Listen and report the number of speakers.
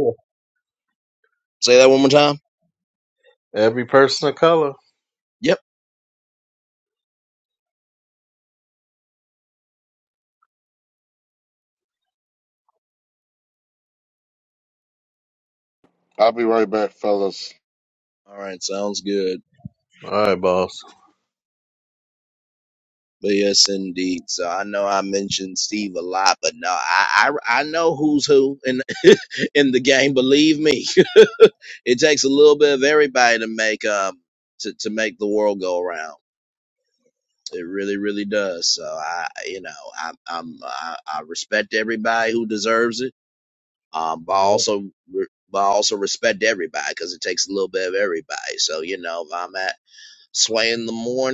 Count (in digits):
3